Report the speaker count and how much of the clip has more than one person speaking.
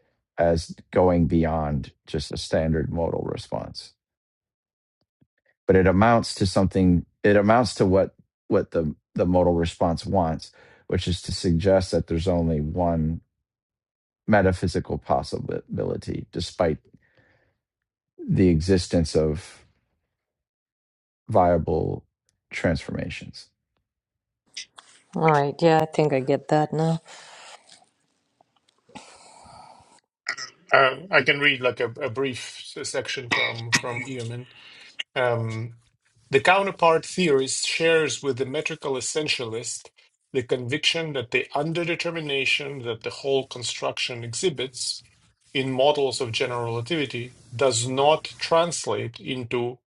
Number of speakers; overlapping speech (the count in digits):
3, no overlap